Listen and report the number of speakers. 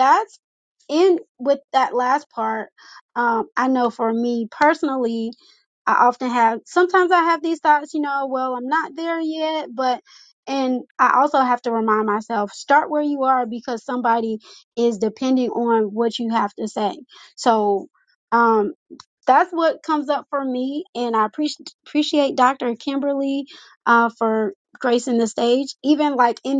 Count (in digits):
1